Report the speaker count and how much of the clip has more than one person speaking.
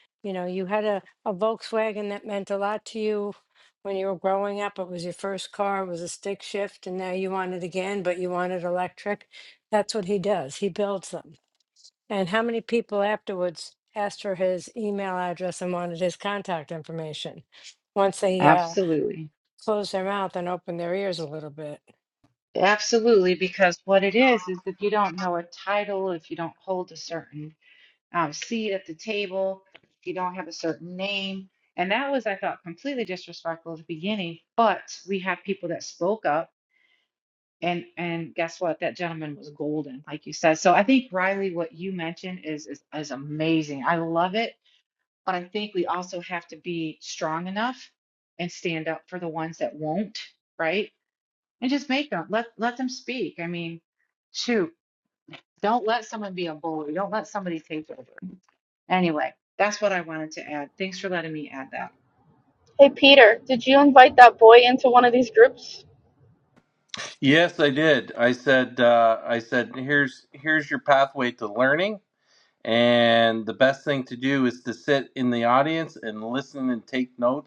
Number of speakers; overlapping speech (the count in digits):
4, under 1%